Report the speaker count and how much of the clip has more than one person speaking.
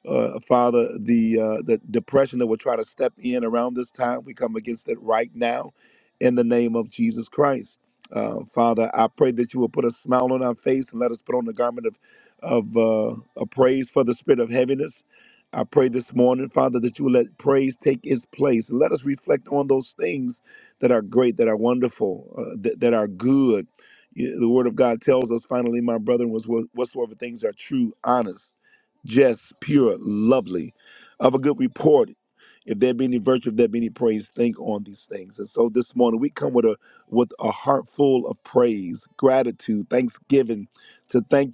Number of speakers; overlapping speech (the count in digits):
1, no overlap